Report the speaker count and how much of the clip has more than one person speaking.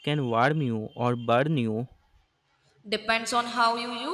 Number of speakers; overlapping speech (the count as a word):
two, no overlap